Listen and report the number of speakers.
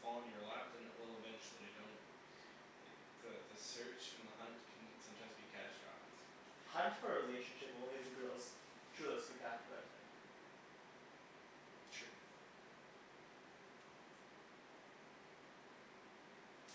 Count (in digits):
2